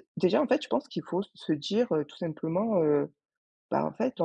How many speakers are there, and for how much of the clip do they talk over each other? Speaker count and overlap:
1, no overlap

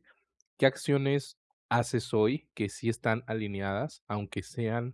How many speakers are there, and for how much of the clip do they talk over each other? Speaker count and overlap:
1, no overlap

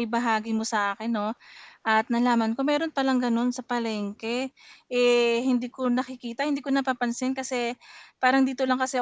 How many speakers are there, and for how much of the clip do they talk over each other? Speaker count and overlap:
1, no overlap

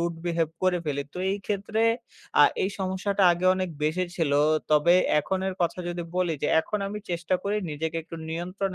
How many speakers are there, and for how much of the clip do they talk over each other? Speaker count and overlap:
1, no overlap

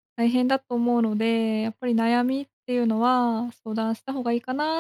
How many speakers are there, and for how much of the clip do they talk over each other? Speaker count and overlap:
1, no overlap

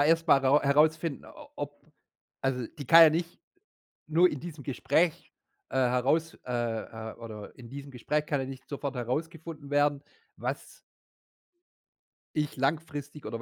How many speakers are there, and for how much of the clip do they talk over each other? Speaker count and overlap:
1, no overlap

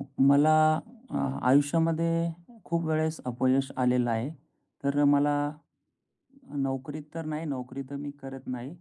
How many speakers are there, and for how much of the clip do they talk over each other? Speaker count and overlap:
1, no overlap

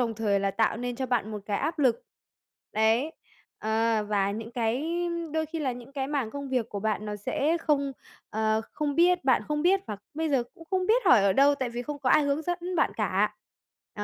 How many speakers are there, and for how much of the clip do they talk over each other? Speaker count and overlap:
1, no overlap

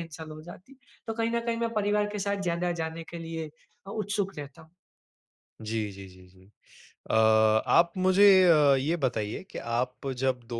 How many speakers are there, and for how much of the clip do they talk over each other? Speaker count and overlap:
2, no overlap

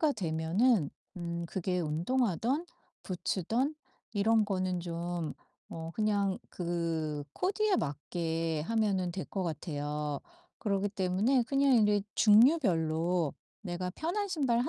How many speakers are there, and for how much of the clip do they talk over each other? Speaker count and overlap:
1, no overlap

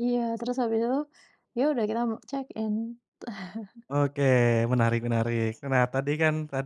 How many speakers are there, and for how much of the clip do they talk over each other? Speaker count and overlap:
2, no overlap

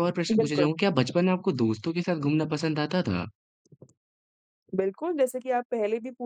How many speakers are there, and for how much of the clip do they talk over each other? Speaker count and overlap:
2, about 6%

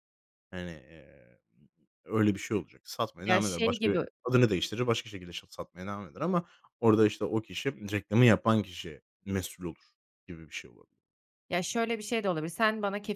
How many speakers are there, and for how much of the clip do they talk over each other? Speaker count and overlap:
2, about 6%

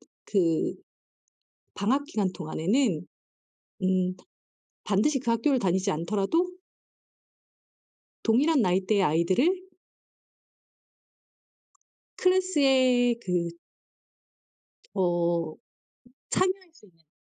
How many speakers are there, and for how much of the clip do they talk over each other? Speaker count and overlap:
1, no overlap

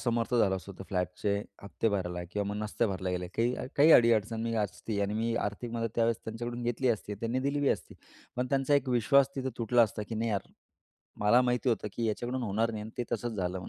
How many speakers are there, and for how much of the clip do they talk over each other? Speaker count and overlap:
1, no overlap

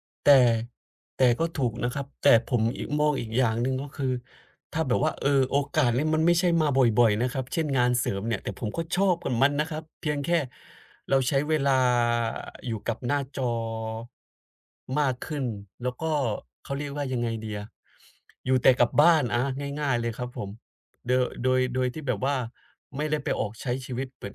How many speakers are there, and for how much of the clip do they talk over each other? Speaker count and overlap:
1, no overlap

